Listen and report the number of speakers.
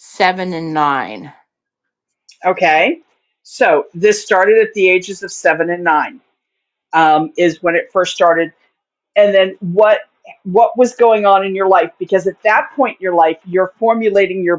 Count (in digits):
2